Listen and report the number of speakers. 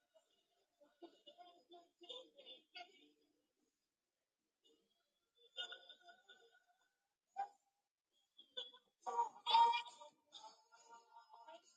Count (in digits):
0